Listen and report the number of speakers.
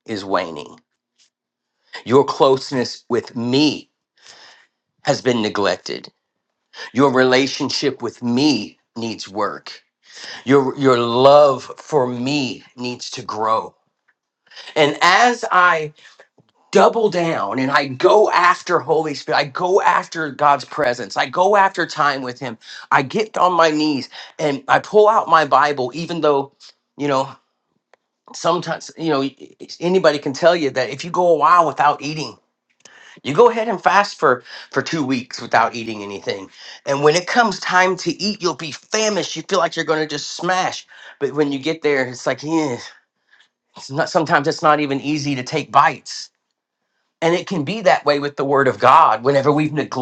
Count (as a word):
one